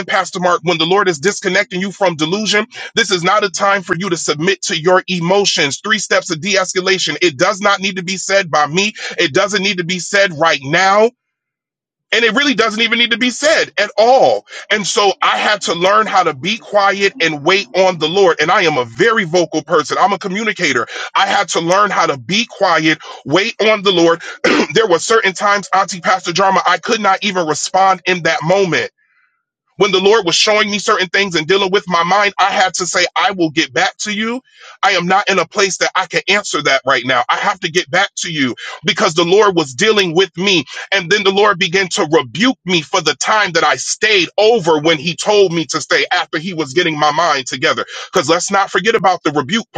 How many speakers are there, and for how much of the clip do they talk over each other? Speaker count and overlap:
1, no overlap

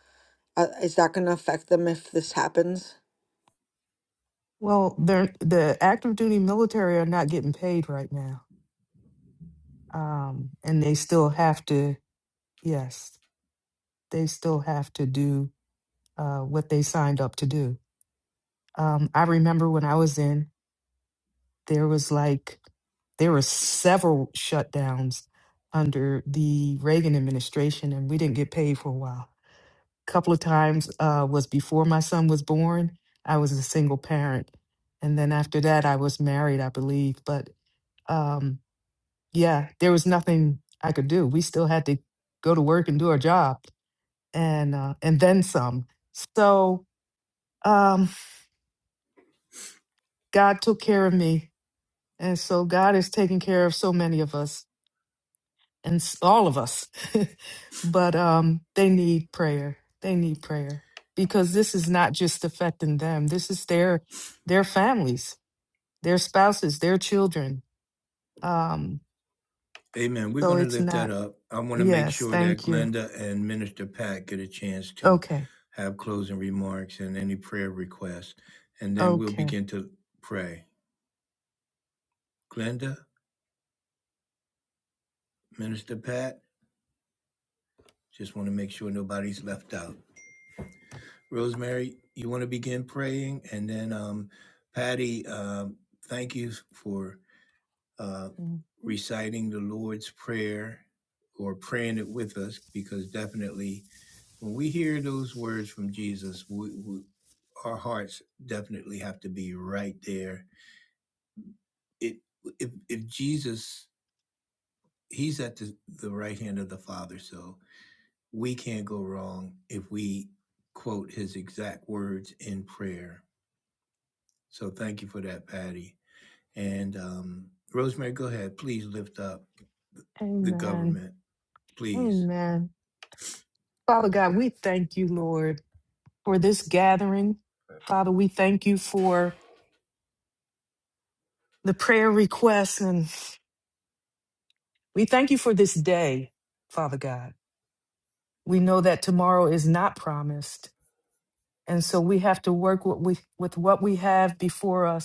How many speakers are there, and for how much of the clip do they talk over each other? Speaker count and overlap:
3, about 2%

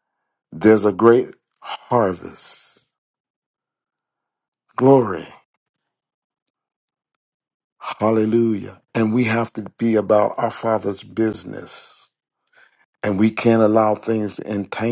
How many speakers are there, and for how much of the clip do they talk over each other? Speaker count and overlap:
1, no overlap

